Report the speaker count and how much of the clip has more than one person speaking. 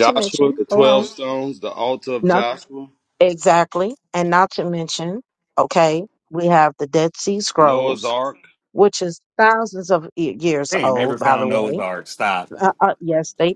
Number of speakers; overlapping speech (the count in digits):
3, about 19%